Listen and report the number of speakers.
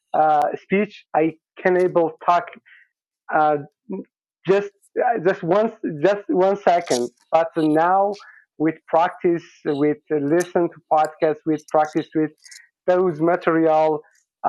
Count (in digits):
1